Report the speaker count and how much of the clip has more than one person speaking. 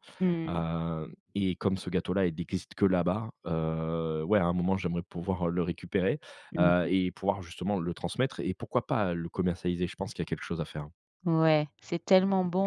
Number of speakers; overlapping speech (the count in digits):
2, about 4%